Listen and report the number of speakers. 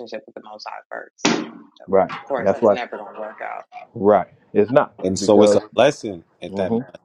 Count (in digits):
3